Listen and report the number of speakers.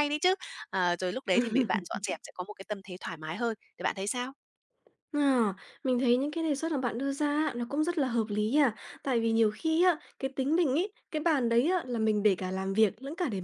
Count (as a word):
two